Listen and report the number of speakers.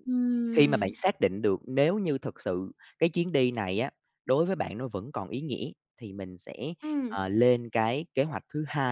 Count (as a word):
two